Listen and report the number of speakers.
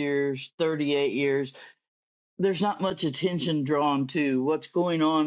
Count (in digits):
1